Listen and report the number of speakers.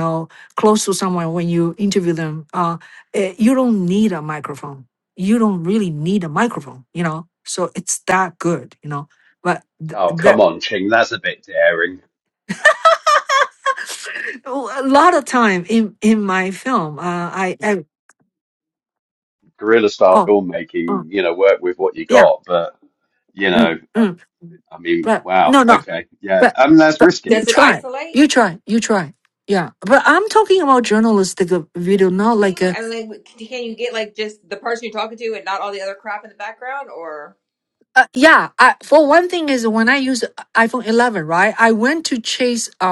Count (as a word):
three